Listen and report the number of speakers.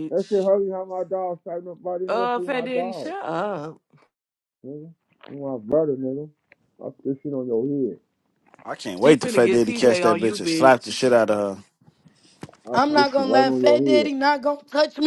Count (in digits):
4